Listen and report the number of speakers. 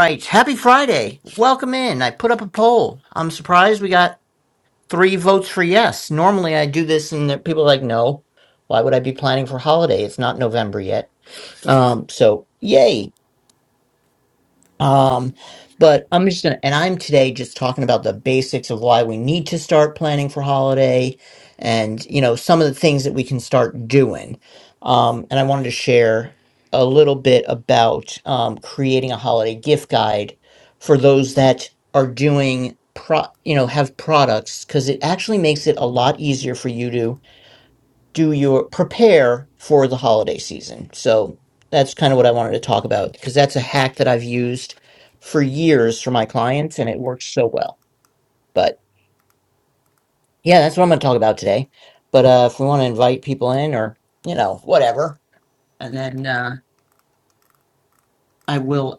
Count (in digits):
1